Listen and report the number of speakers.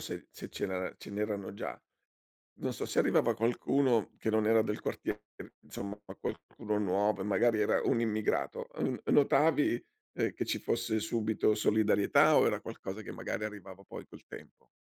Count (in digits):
1